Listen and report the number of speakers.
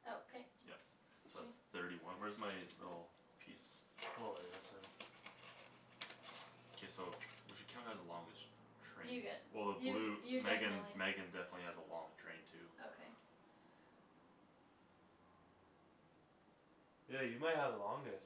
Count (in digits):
3